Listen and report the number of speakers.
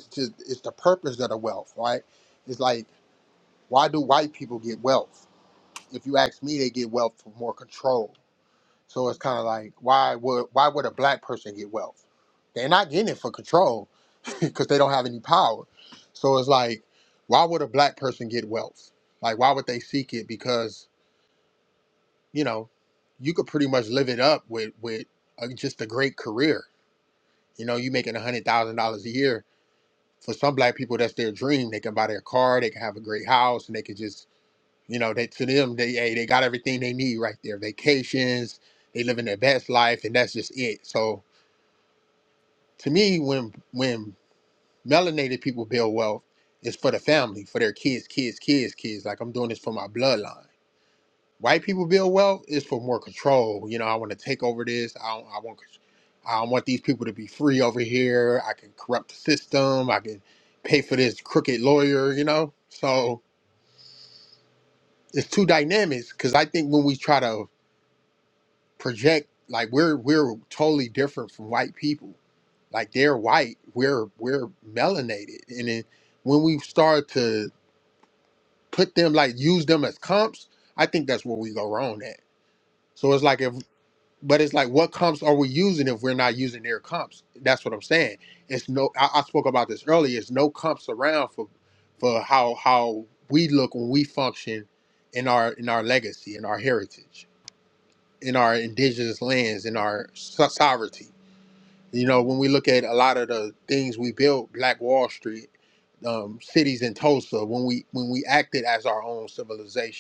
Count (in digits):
1